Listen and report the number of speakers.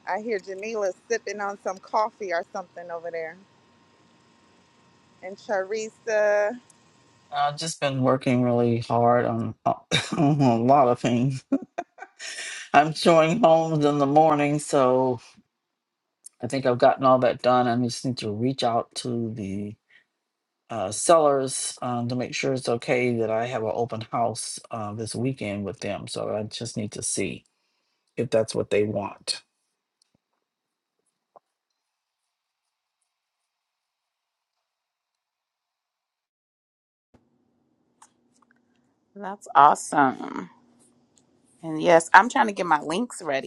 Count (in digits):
3